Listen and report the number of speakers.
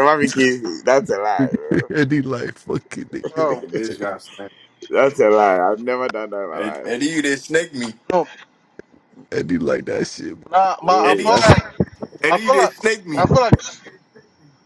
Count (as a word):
four